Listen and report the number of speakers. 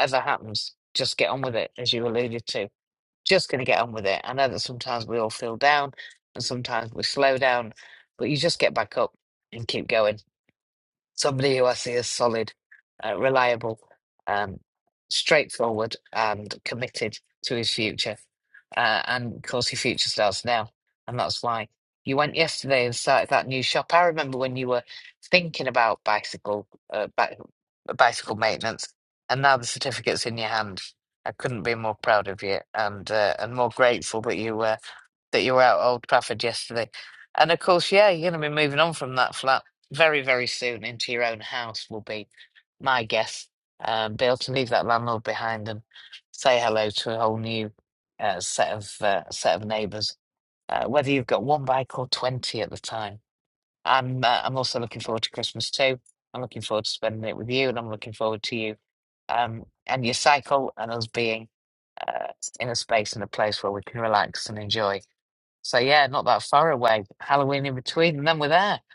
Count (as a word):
one